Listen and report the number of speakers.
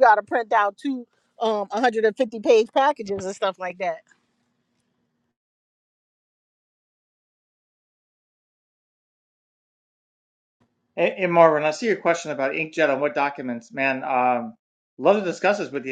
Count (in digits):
2